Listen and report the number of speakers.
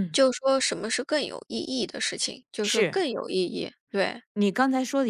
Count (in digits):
2